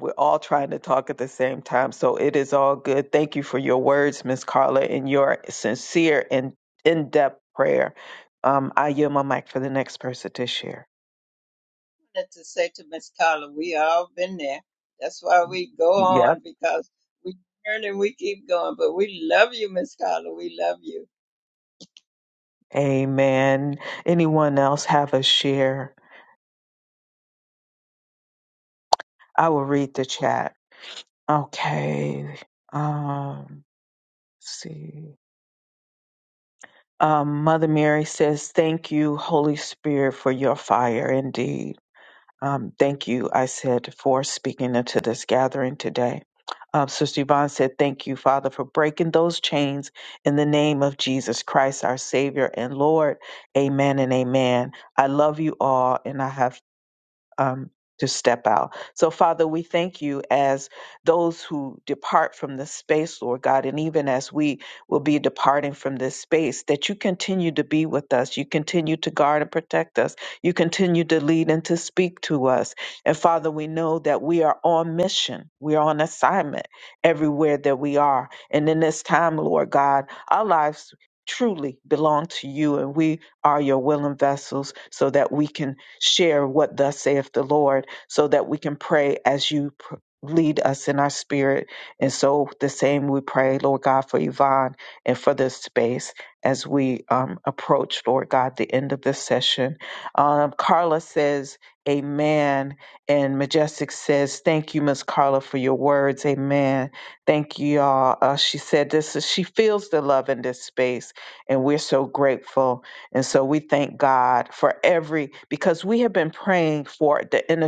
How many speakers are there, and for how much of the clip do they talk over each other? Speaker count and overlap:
2, no overlap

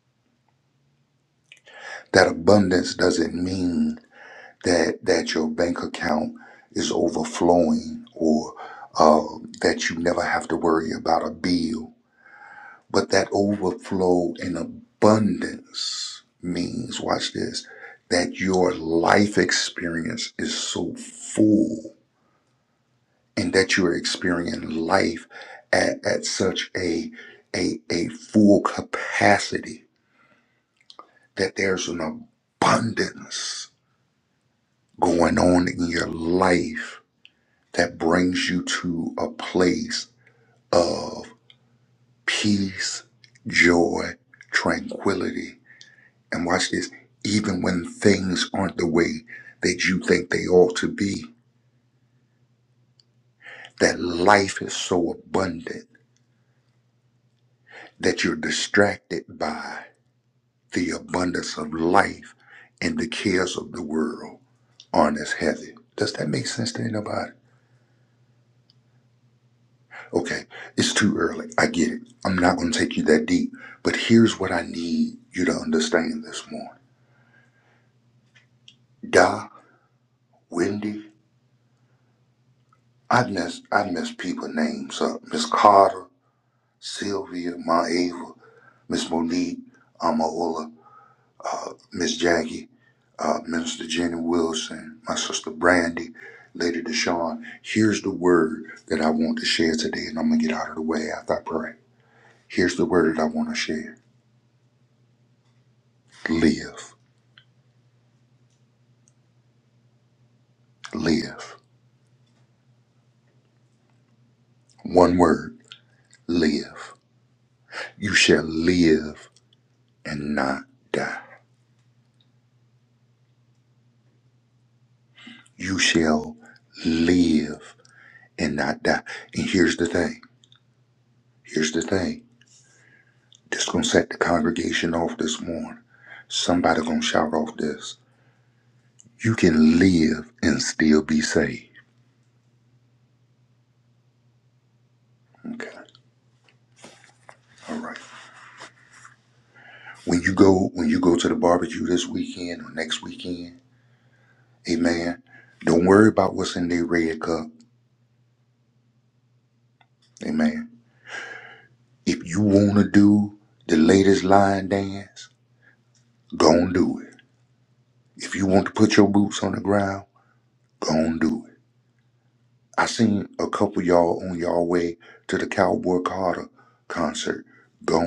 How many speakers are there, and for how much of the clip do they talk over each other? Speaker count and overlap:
1, no overlap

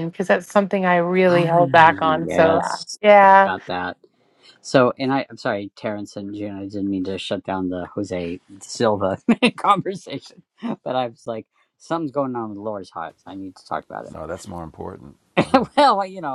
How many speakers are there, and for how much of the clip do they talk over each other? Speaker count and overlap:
3, about 11%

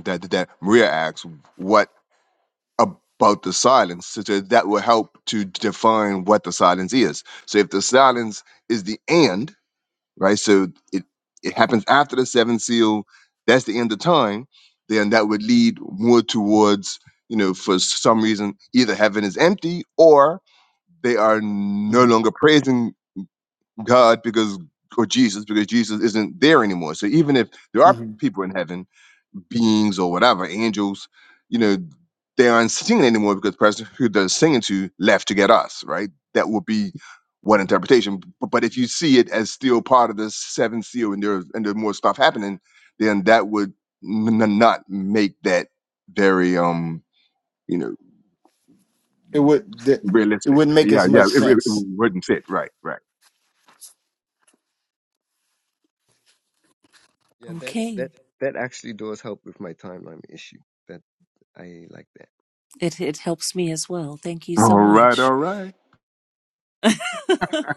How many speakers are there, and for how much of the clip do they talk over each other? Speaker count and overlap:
4, about 4%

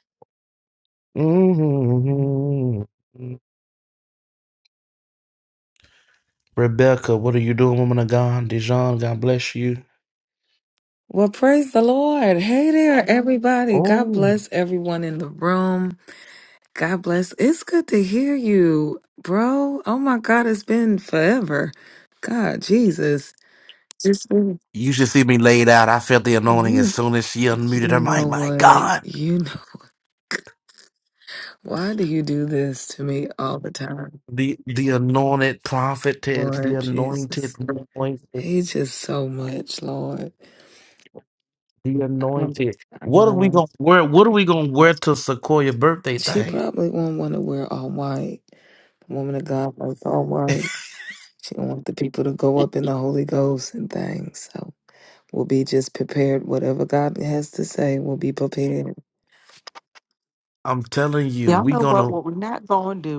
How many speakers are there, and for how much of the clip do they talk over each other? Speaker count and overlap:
3, about 9%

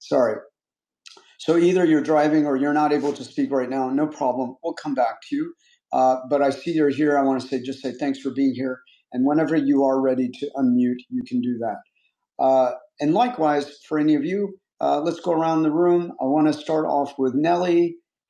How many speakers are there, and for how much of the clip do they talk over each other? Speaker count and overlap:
1, no overlap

